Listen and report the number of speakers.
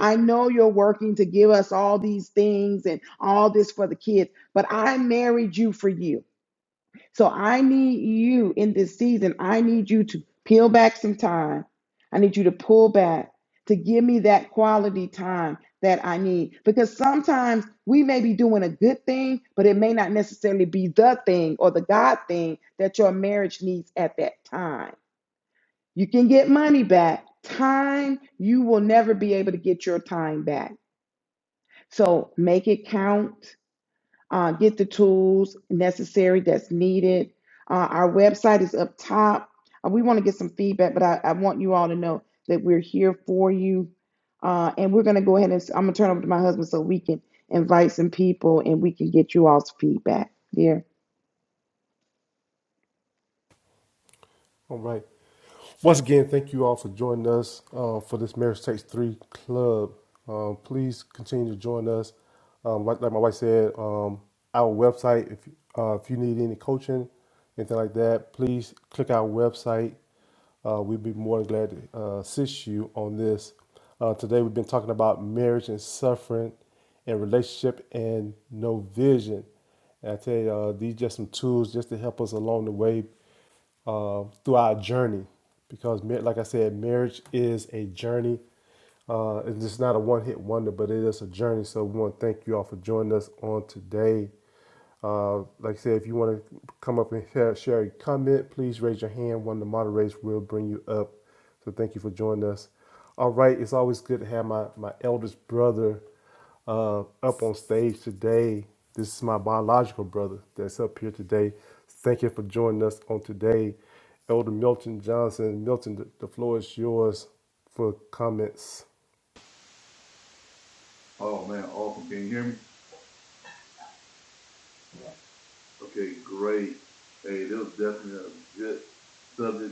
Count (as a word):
three